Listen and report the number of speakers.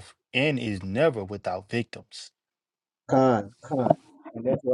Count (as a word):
two